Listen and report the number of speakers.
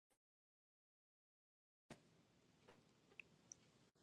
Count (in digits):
0